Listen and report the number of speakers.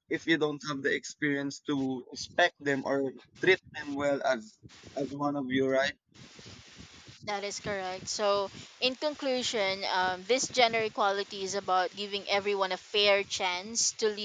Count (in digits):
2